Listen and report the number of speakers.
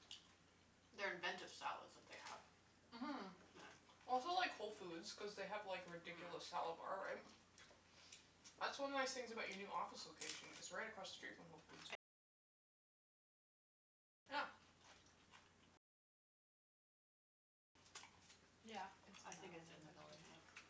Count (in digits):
3